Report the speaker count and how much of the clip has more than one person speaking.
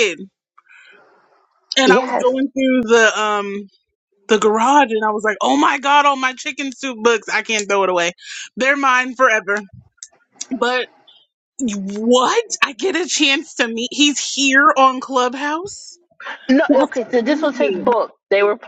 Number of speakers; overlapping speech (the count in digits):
2, about 9%